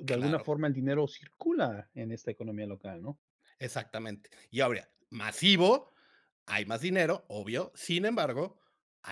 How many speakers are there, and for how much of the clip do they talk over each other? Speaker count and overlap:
two, about 4%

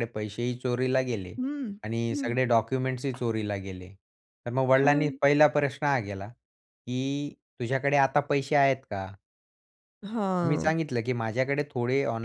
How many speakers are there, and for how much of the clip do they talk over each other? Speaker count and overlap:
two, about 8%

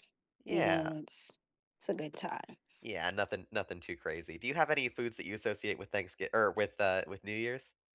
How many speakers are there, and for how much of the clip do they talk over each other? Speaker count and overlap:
two, about 6%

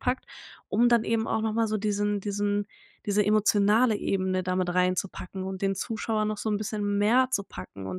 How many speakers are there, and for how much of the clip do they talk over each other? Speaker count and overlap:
one, no overlap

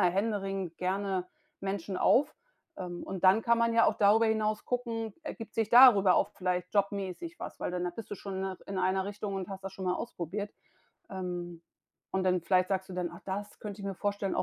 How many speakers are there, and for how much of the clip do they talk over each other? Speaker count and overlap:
one, no overlap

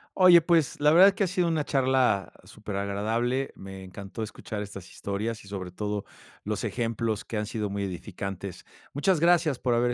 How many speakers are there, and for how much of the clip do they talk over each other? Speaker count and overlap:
one, no overlap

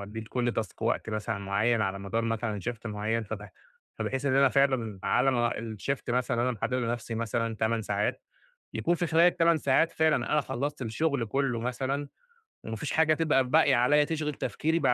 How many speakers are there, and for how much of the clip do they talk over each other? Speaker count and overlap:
one, no overlap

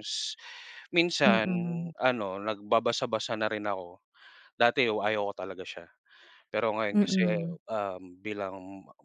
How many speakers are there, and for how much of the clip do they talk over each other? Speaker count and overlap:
two, about 7%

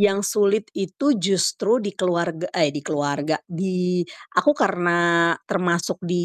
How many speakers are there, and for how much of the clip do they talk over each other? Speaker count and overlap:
one, no overlap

